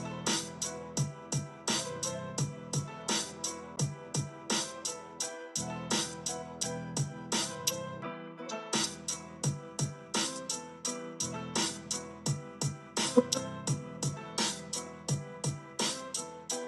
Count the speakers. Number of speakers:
zero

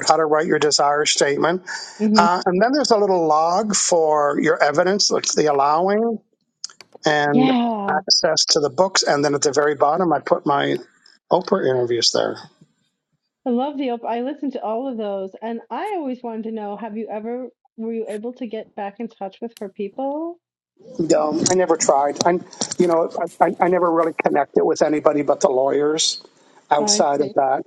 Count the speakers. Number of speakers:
two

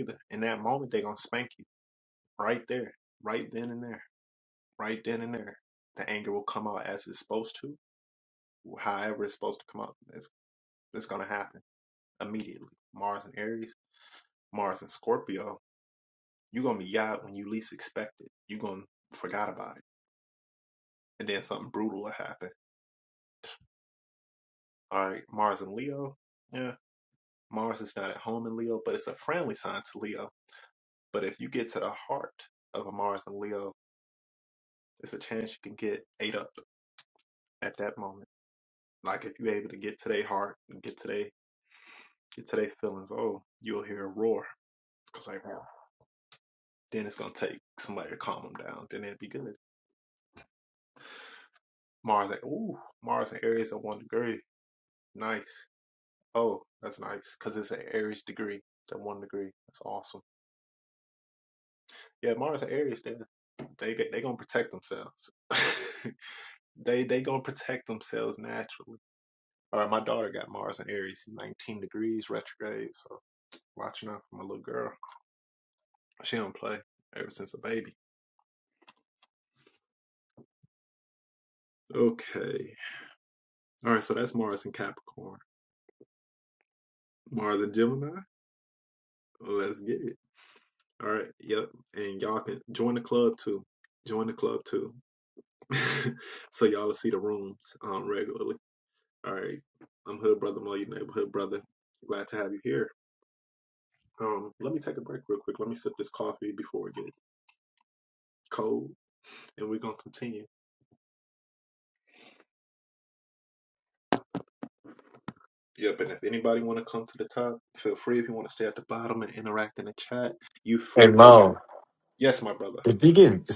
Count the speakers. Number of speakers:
two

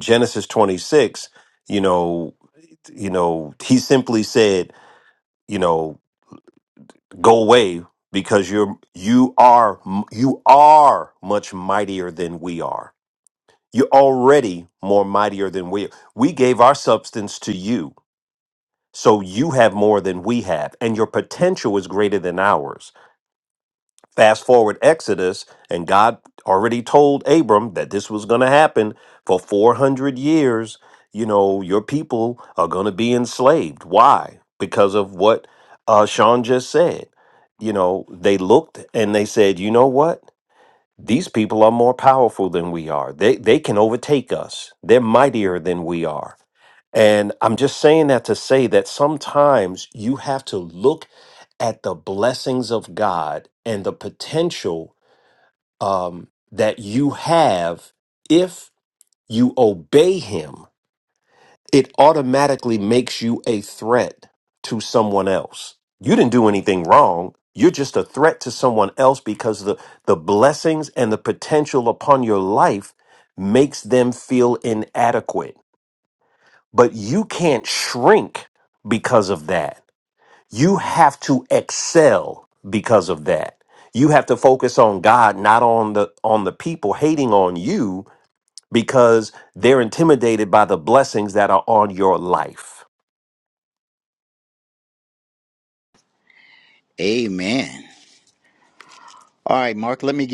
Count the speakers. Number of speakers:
two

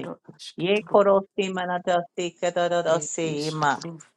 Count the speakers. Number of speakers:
two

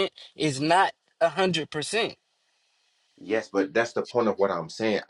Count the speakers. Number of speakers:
two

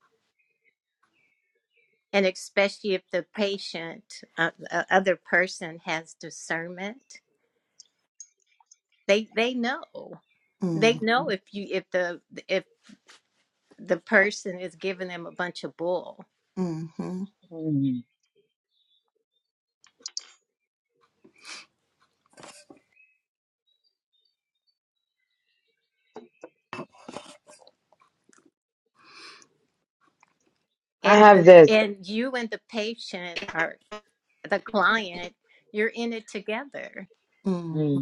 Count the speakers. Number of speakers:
three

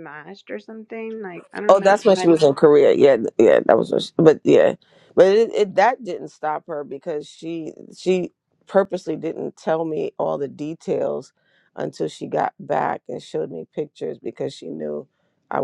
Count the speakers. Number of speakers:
two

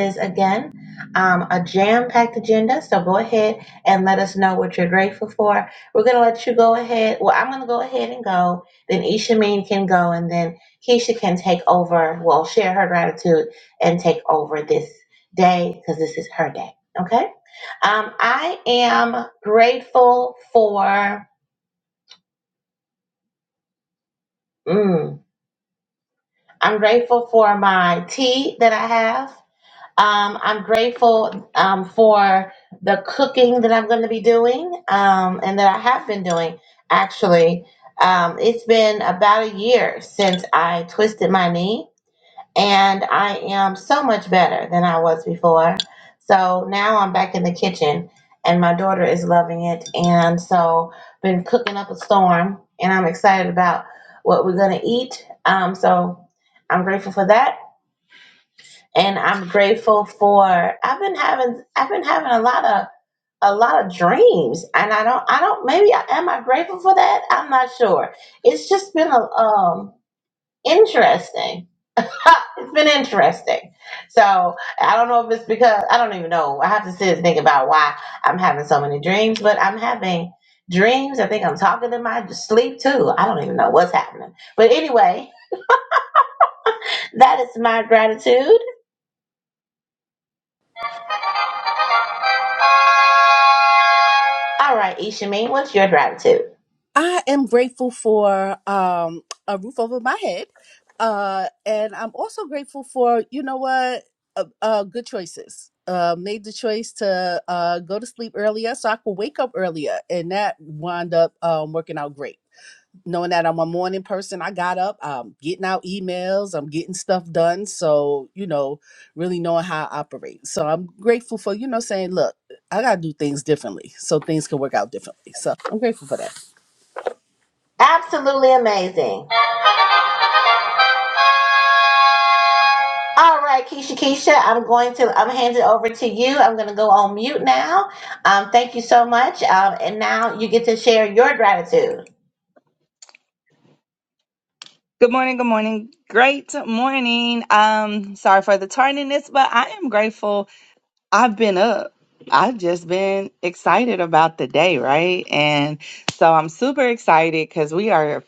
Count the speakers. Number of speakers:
three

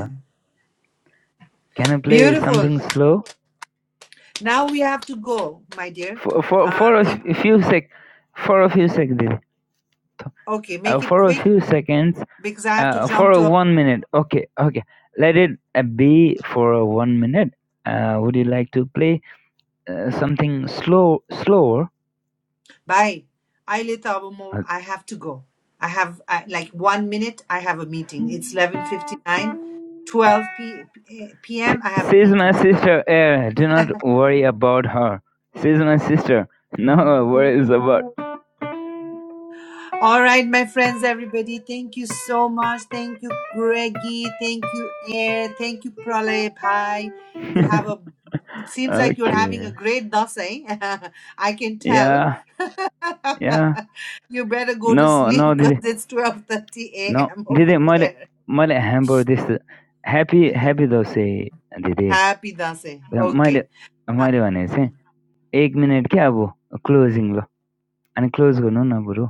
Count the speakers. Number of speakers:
two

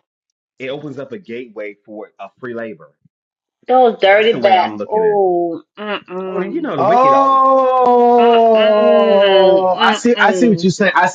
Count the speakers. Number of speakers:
three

